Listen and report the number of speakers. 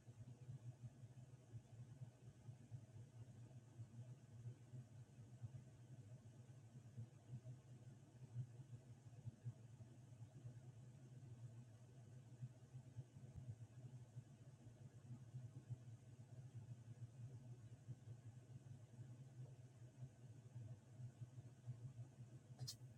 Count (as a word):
zero